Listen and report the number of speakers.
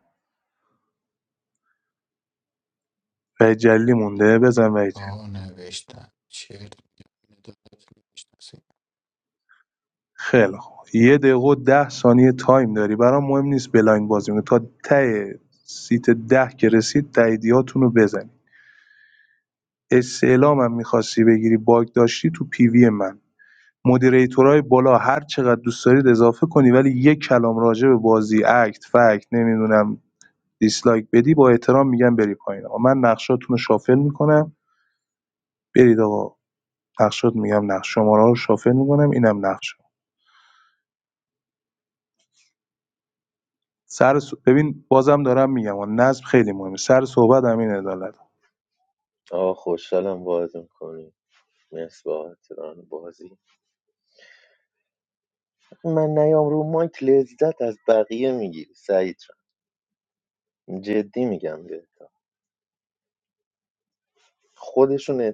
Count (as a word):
three